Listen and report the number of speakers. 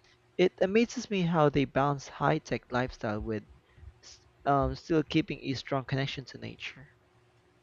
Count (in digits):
1